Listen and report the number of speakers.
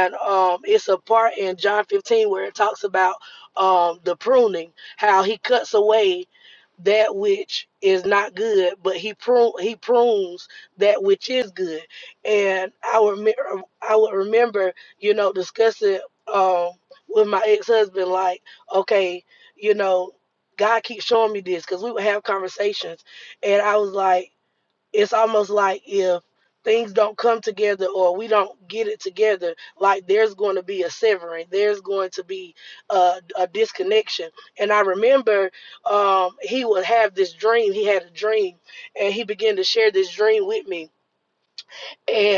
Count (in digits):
1